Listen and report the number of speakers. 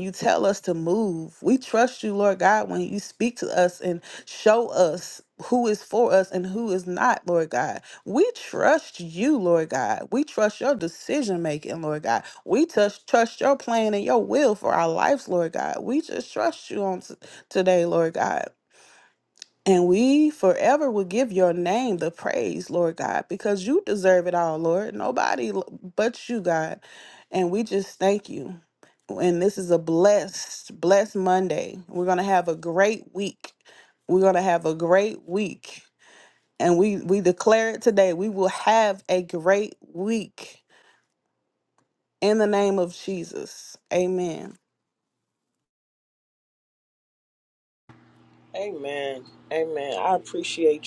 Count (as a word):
two